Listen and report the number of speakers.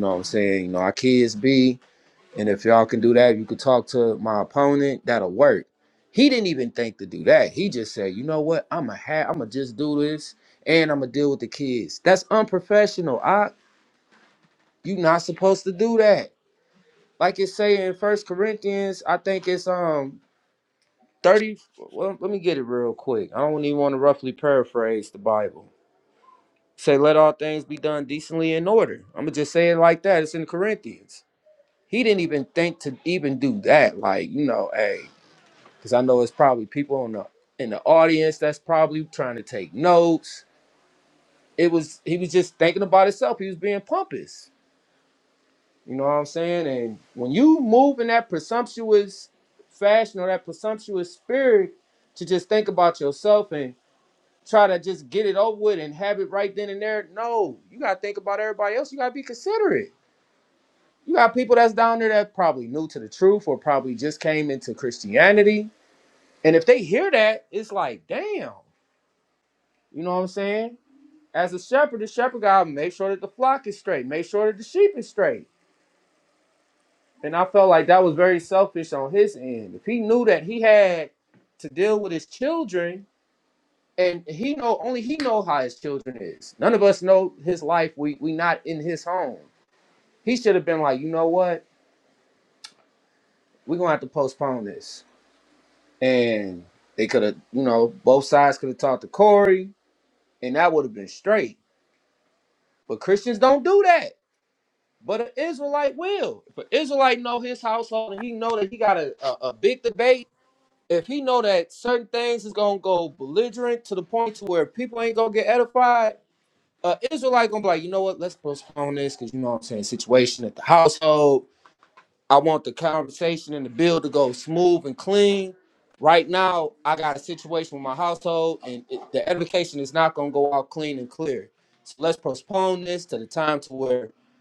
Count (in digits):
1